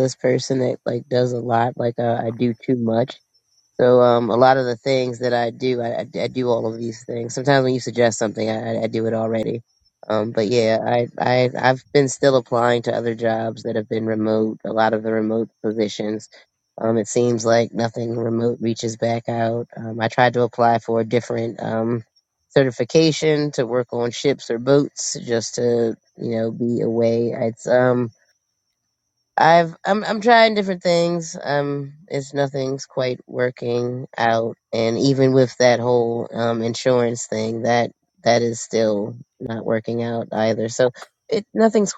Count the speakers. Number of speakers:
1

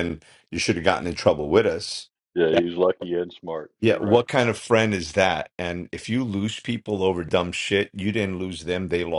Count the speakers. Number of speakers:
2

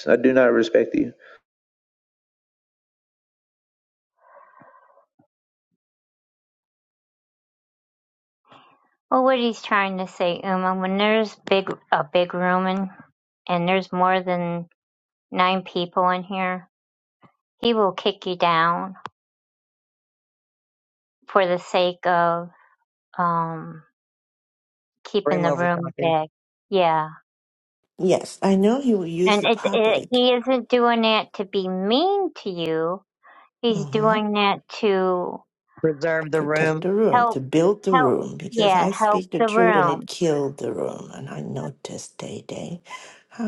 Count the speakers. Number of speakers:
4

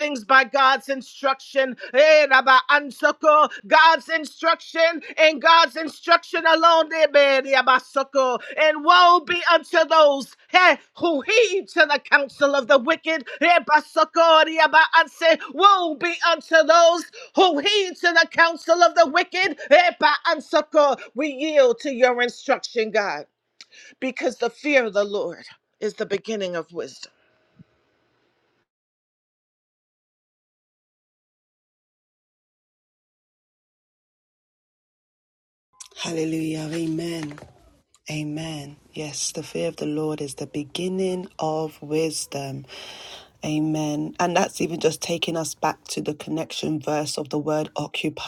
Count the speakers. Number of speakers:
2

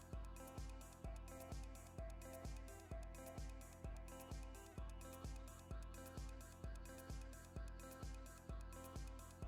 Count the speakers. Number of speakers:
0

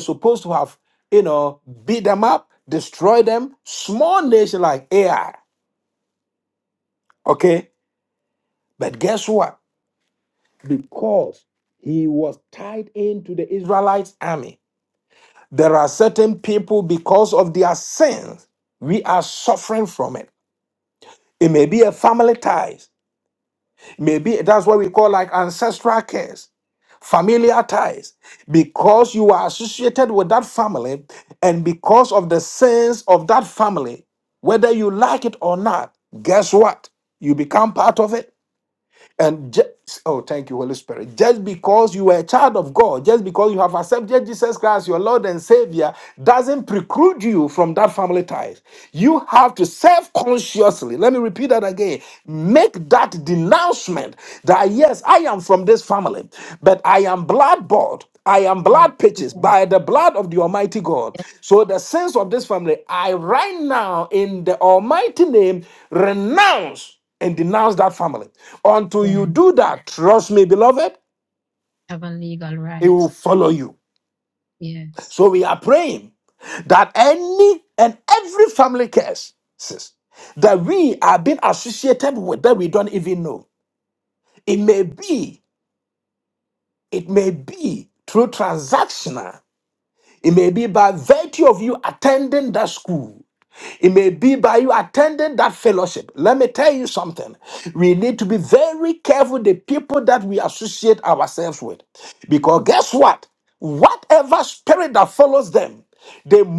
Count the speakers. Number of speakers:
2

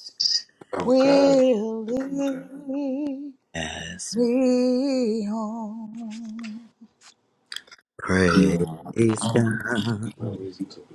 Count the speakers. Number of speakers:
3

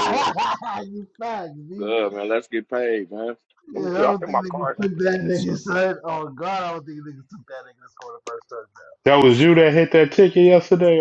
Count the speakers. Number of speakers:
3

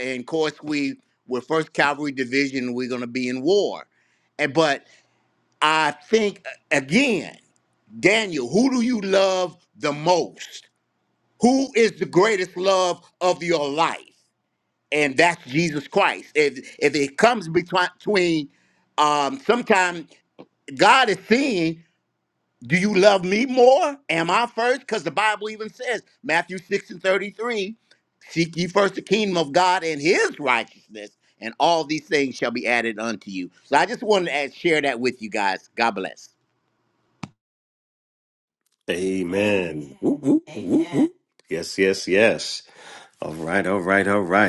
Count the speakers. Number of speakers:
2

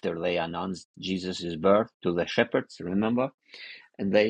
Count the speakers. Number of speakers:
1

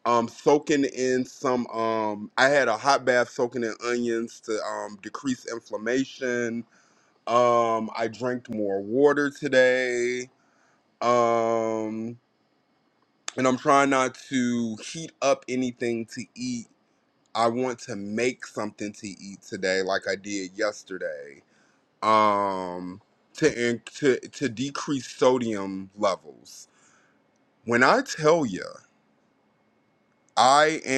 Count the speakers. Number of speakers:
1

